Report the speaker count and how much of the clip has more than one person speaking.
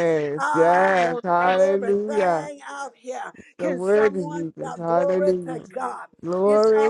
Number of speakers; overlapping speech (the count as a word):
two, about 65%